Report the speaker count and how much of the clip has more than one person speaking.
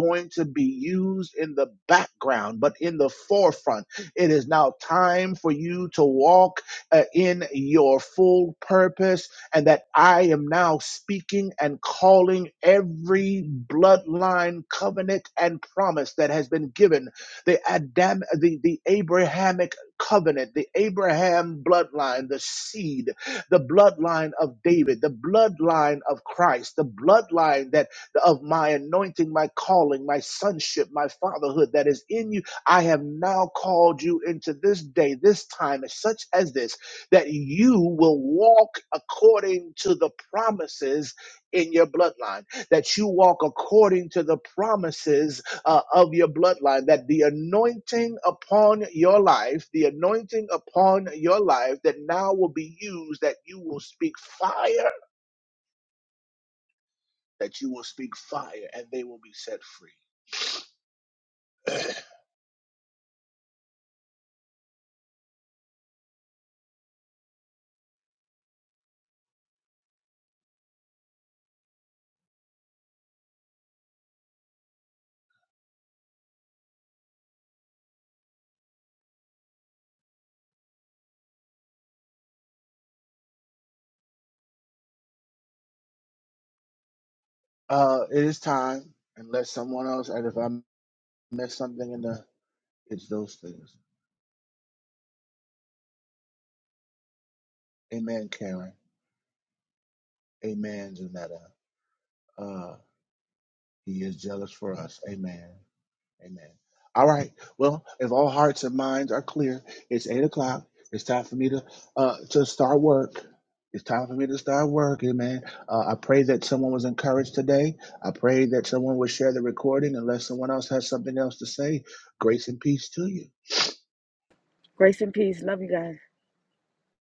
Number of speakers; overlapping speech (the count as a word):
two, no overlap